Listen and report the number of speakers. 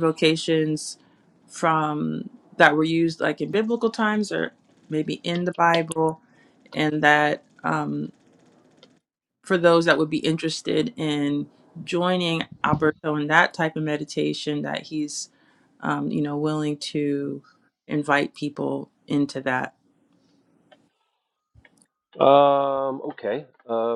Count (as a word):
two